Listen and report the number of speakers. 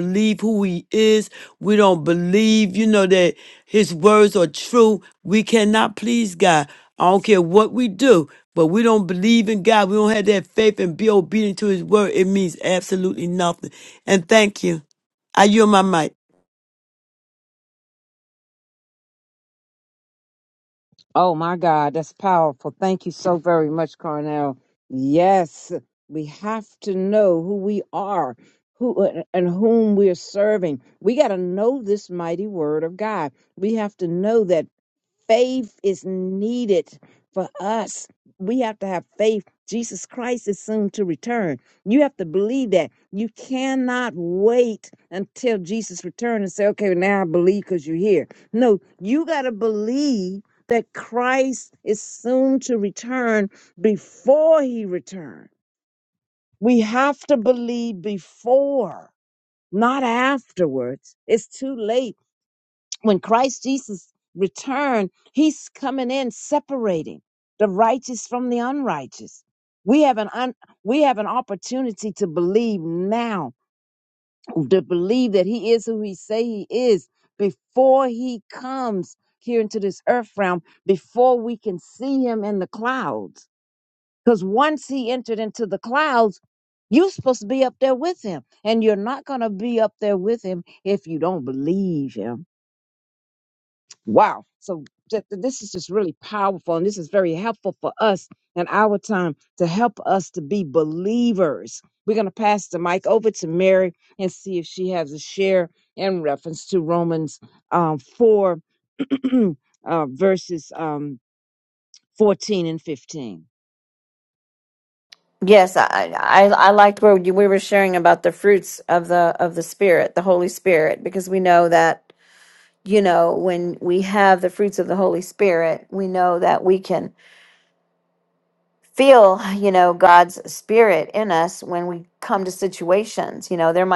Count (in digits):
3